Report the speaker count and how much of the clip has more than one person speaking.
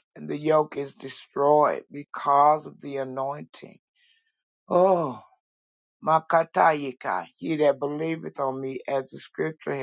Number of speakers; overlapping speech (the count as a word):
one, no overlap